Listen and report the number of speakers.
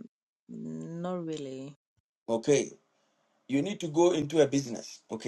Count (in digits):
2